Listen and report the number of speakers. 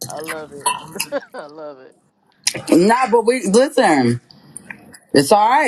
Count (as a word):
two